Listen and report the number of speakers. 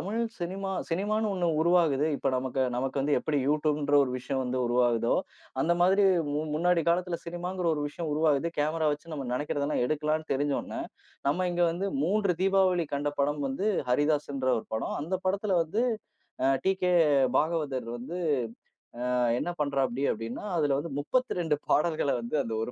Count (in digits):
1